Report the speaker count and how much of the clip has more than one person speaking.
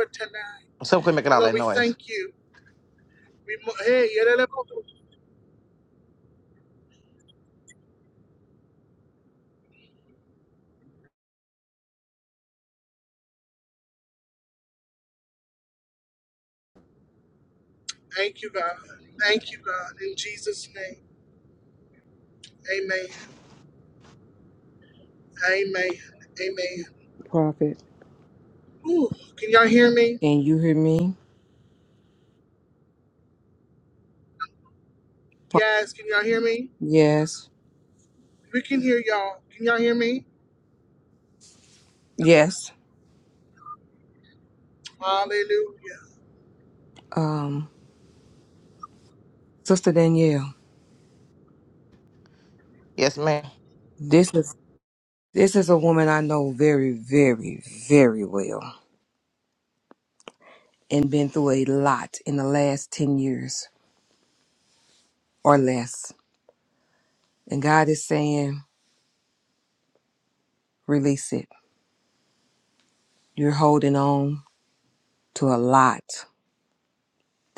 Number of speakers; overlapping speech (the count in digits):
3, about 1%